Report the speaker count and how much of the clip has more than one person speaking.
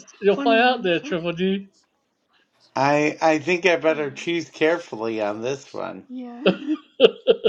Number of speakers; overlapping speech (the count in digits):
3, about 11%